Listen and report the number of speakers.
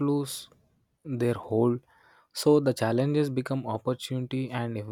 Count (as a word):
one